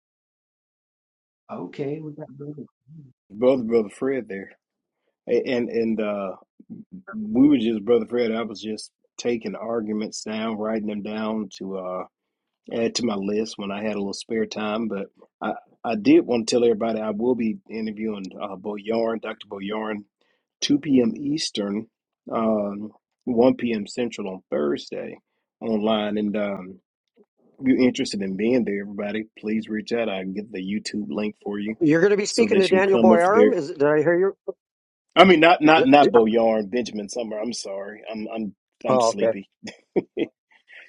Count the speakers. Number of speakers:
3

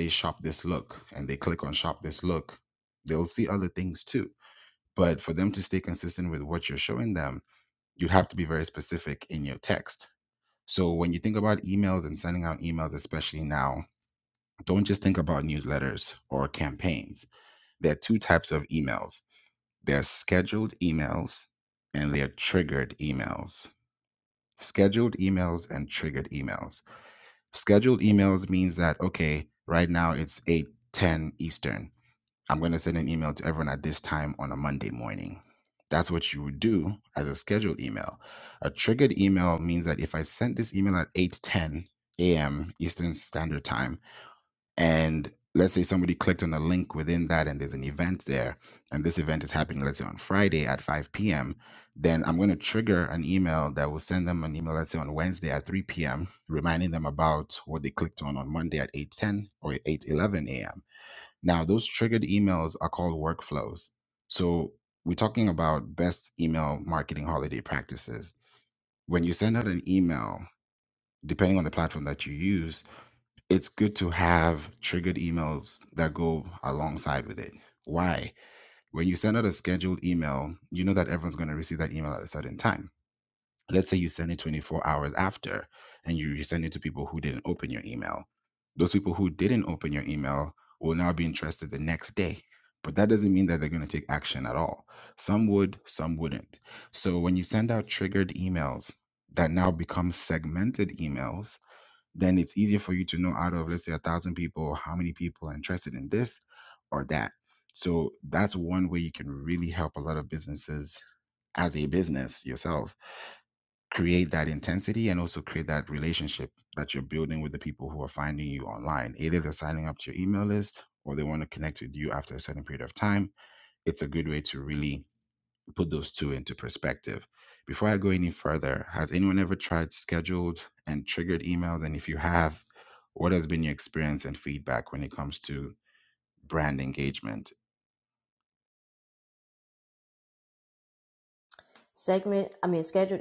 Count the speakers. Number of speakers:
2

